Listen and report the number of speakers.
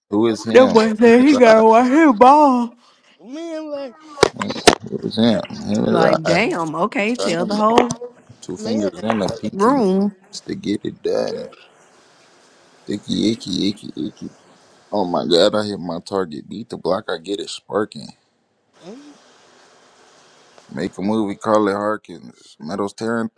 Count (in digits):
3